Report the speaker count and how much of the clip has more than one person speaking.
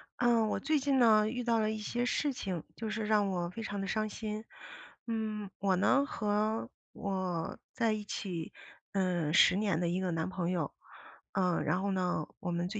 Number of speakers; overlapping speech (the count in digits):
1, no overlap